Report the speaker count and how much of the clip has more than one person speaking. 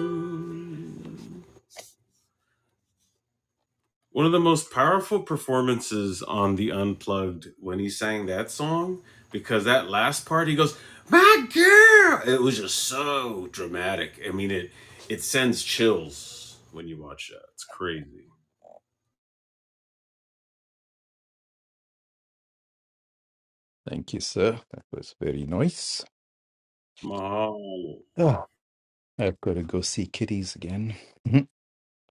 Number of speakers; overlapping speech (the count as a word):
two, no overlap